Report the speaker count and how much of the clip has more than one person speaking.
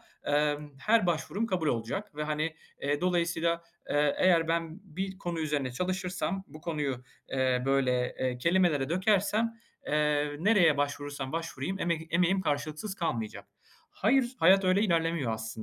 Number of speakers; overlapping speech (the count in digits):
1, no overlap